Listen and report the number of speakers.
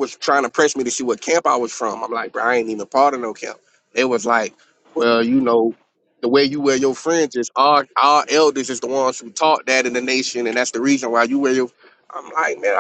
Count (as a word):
one